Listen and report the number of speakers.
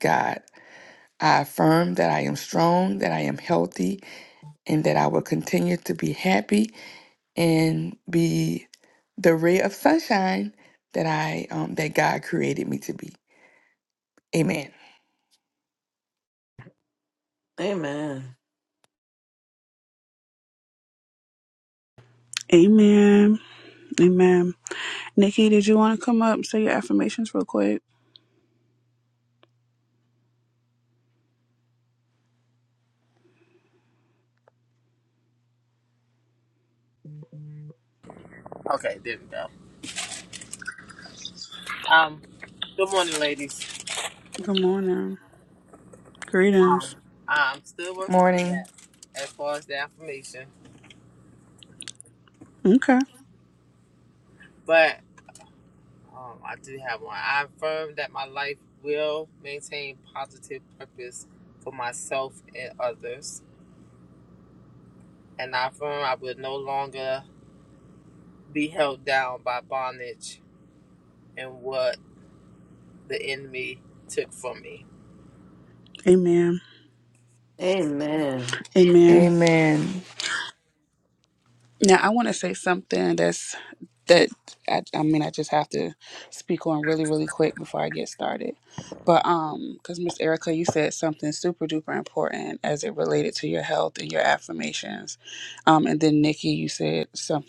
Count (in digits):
4